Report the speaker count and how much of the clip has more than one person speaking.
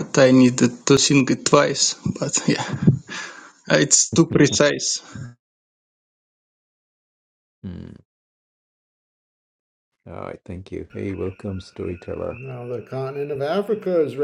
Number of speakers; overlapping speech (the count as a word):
three, no overlap